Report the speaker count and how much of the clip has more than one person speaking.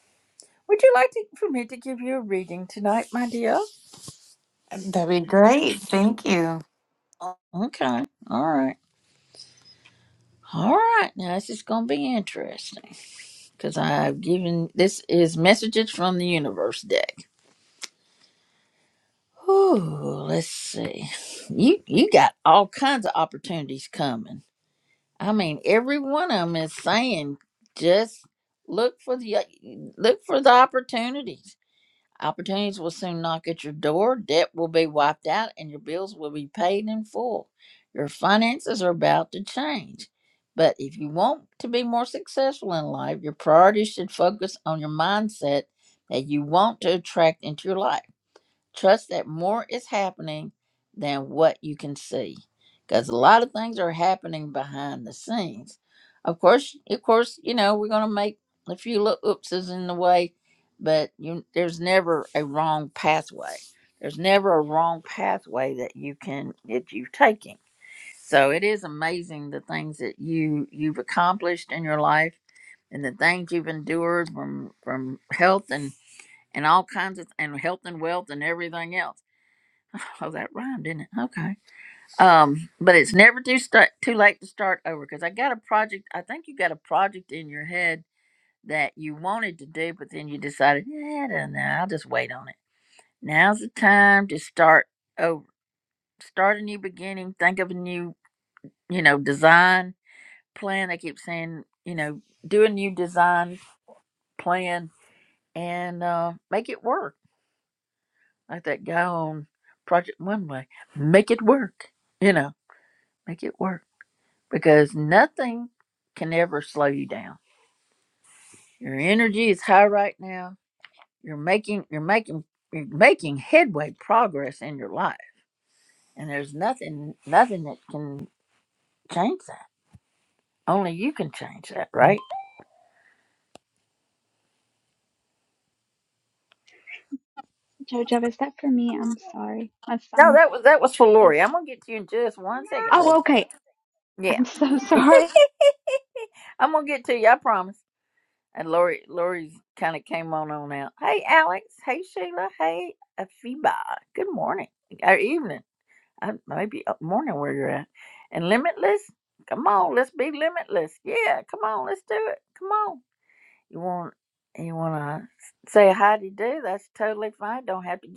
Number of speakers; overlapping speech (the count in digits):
3, under 1%